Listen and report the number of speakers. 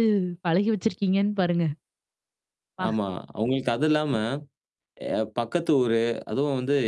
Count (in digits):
2